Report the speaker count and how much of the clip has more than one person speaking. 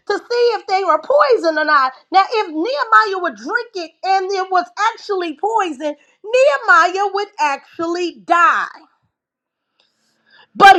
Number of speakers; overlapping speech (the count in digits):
1, no overlap